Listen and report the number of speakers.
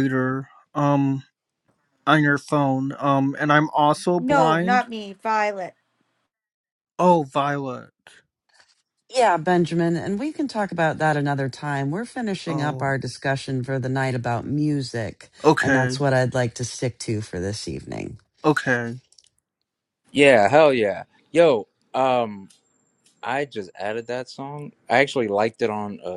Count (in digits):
4